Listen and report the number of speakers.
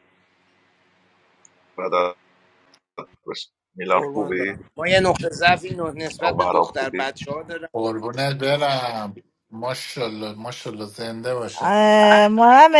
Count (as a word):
four